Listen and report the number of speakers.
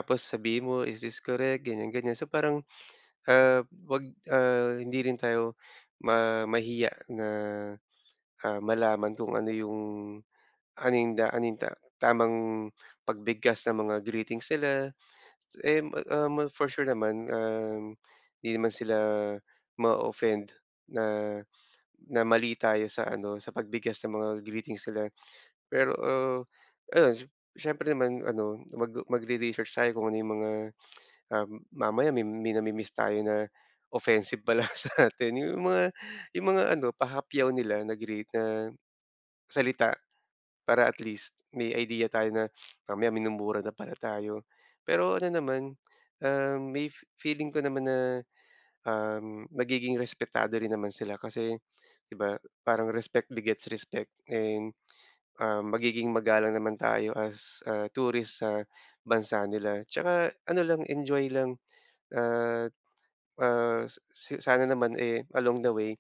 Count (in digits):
1